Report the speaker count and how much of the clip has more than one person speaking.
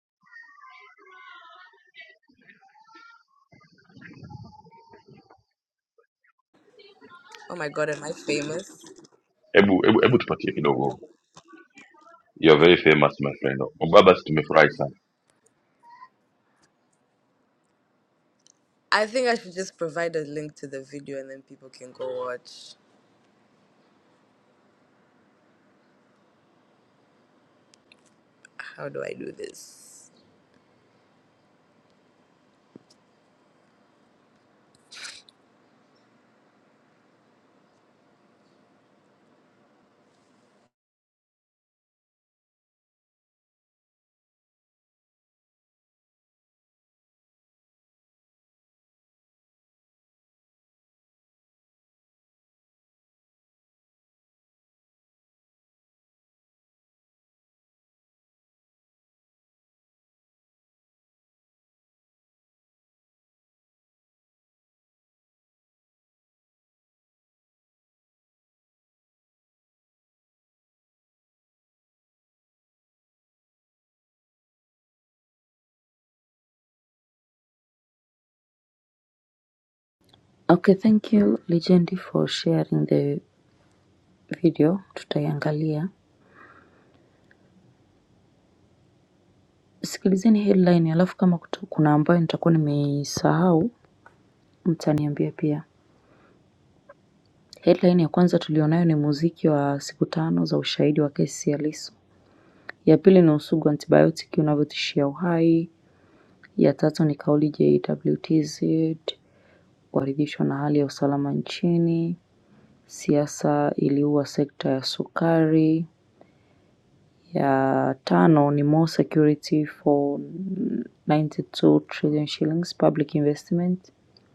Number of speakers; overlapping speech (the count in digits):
3, no overlap